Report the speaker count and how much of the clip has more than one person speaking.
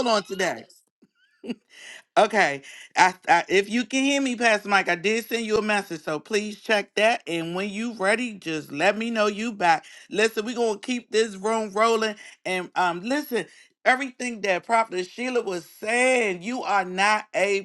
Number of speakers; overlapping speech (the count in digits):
1, no overlap